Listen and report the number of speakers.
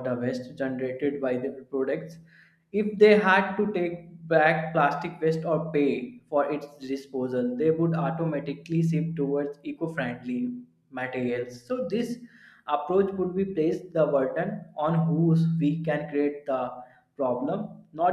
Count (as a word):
one